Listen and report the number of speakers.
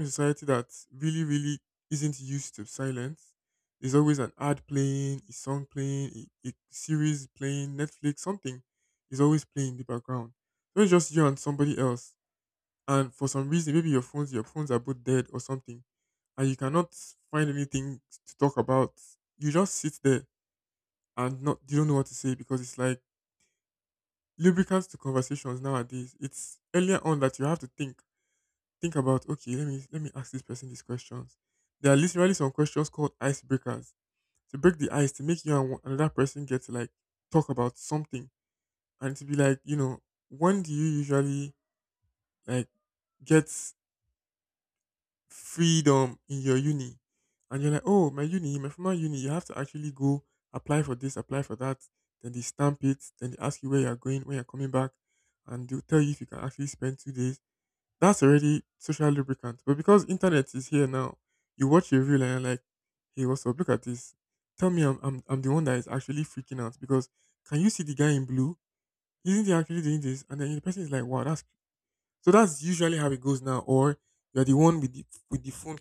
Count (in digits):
1